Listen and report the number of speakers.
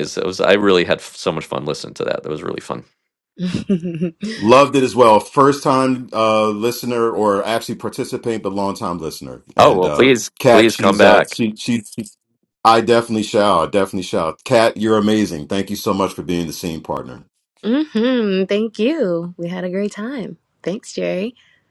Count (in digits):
3